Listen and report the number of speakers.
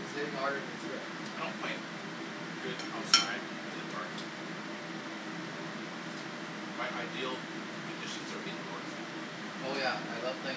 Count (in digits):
2